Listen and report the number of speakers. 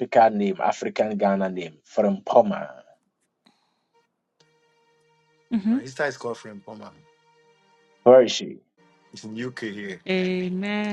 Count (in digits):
3